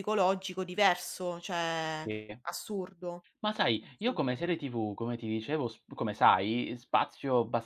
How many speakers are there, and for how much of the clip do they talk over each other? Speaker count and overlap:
two, about 4%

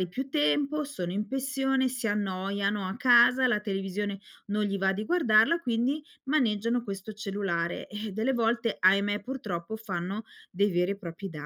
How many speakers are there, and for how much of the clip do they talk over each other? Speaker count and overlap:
one, no overlap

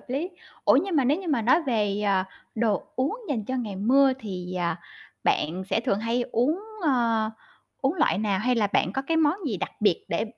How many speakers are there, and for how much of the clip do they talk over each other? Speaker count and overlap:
one, no overlap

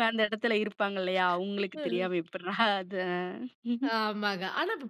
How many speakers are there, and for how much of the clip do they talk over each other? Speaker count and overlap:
two, about 7%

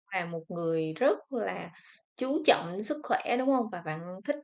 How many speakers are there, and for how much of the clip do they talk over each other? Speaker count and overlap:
one, no overlap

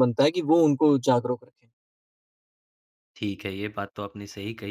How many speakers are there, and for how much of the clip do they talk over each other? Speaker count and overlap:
two, no overlap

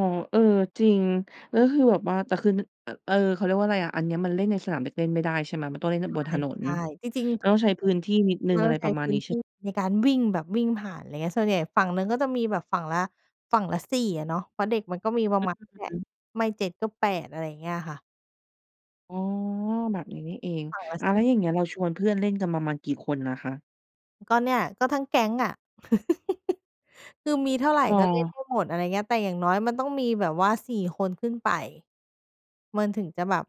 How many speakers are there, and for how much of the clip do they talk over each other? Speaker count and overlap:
two, about 7%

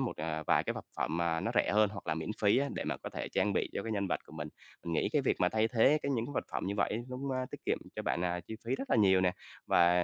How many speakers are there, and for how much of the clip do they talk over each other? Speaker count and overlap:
one, no overlap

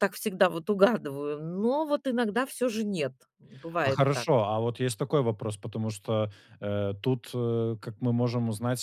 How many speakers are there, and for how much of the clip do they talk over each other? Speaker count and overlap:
two, about 5%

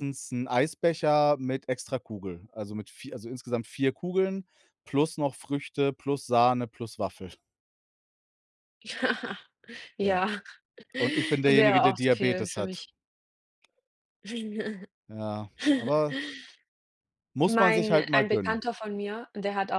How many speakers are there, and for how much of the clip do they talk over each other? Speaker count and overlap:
two, about 16%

